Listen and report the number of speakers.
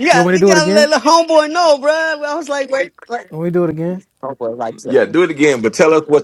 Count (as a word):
three